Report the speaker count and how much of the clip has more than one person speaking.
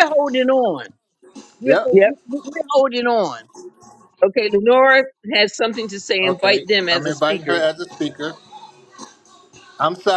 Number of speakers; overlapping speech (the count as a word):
three, about 18%